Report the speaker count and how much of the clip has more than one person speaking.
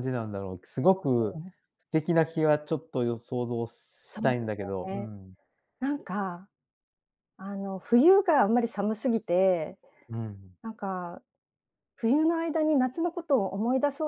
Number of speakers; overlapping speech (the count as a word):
two, about 7%